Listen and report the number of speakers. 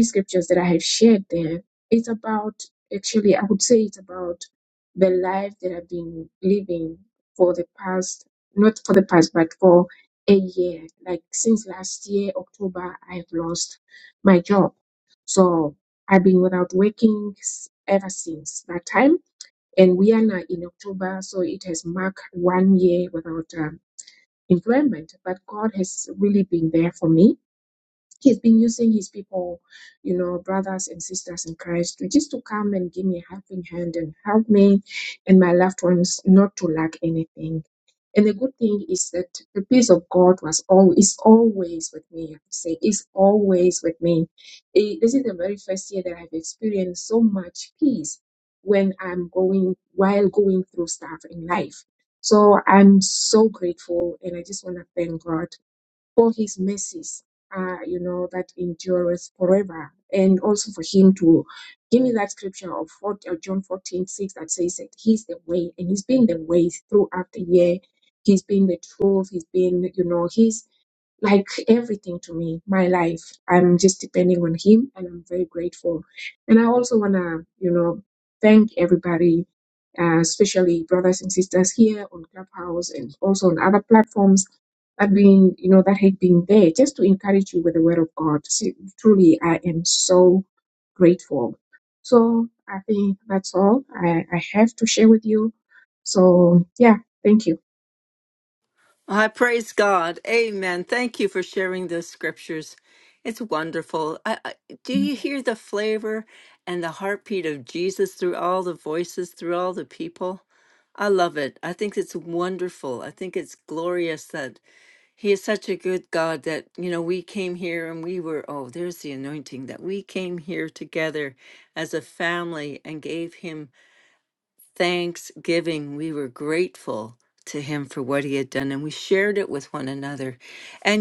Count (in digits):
2